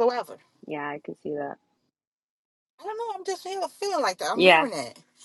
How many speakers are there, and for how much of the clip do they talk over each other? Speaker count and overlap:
two, about 6%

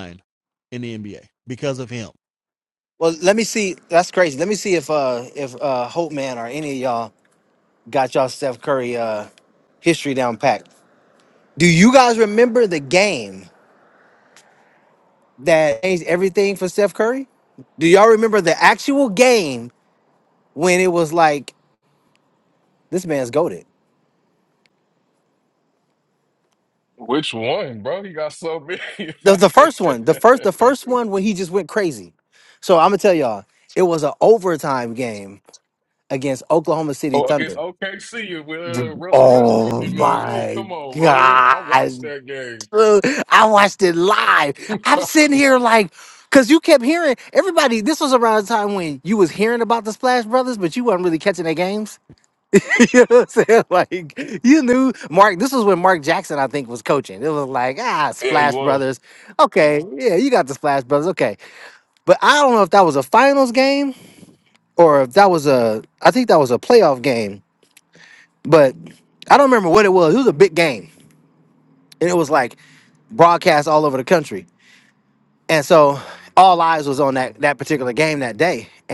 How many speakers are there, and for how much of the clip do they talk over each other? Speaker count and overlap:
three, about 6%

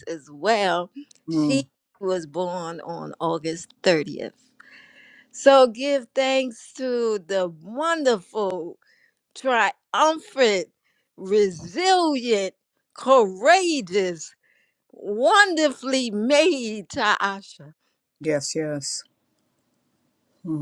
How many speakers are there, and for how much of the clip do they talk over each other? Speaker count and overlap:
two, about 1%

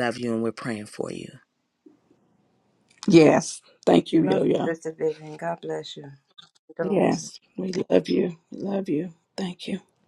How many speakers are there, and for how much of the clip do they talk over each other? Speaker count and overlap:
three, about 8%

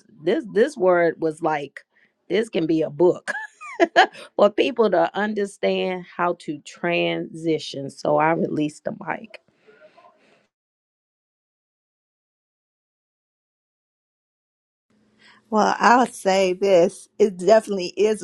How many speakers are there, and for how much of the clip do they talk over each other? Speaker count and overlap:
two, no overlap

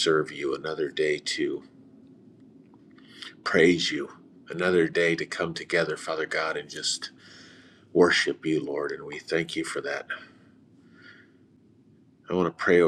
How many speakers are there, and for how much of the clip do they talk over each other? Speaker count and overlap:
one, no overlap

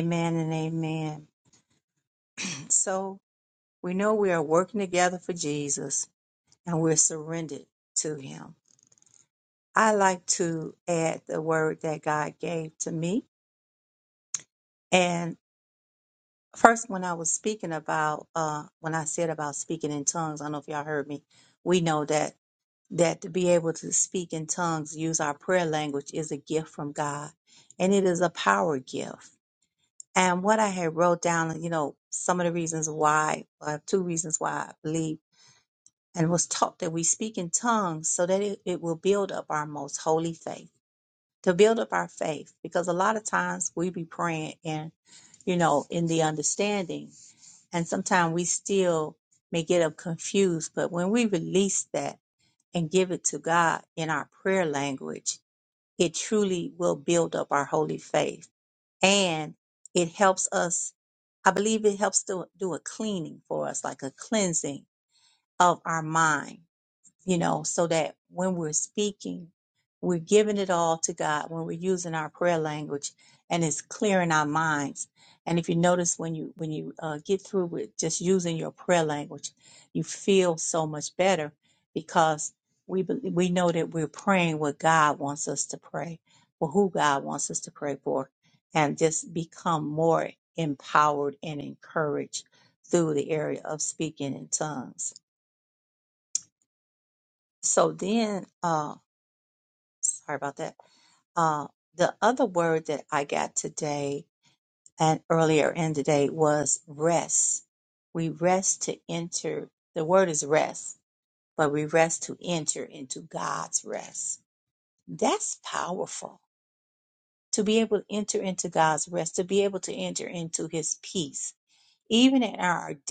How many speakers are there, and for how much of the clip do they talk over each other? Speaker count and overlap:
one, no overlap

